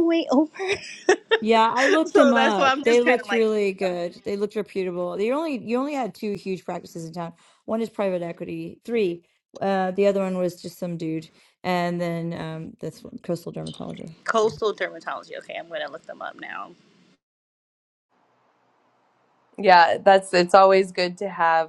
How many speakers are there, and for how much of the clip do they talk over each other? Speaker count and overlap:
3, about 9%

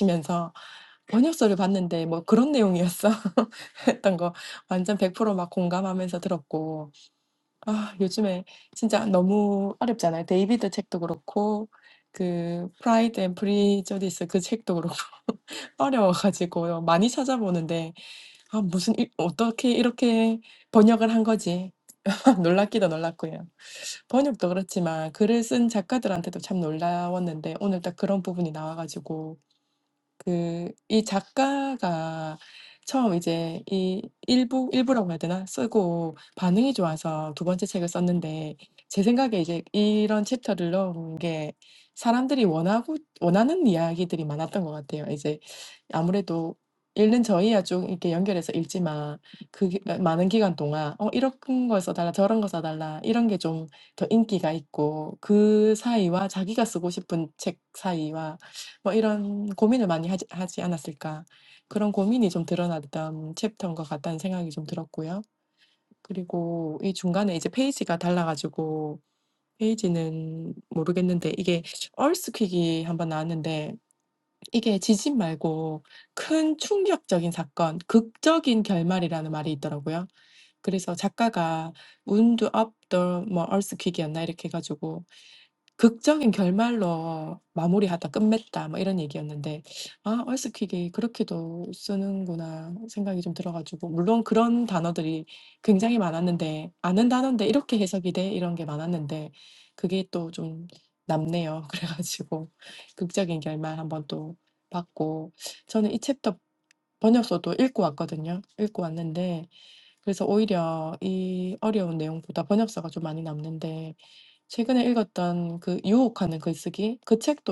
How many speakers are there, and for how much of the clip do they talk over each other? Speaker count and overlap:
1, no overlap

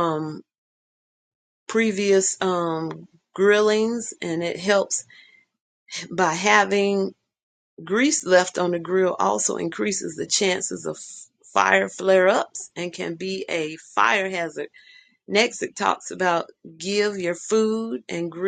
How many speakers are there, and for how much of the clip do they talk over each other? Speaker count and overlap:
1, no overlap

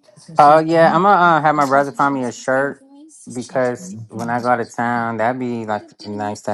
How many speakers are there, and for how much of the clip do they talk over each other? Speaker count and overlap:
1, no overlap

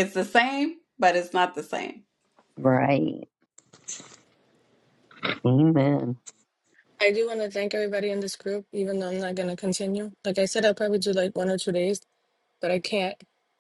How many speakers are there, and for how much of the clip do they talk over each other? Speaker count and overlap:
3, no overlap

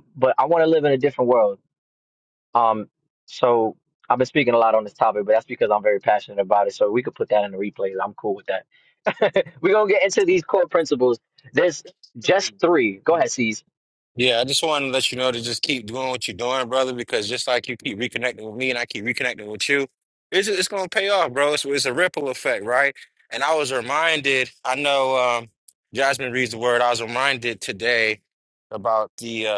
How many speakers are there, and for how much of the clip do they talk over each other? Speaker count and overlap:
2, no overlap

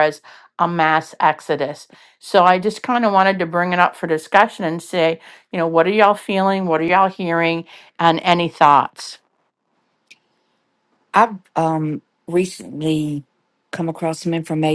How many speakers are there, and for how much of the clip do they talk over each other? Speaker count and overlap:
2, no overlap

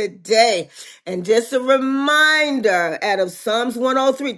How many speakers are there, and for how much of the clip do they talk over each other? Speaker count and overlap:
1, no overlap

